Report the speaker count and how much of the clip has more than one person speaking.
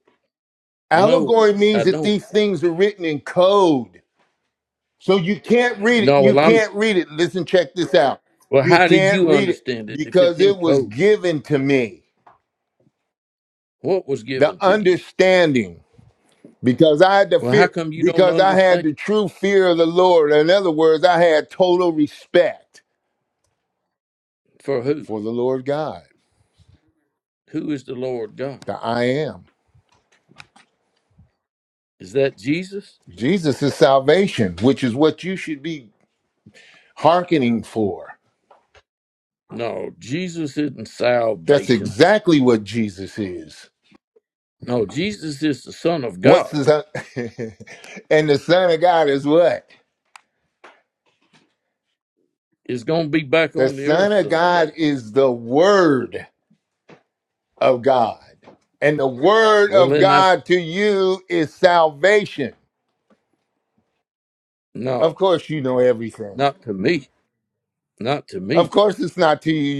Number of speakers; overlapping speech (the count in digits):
2, about 12%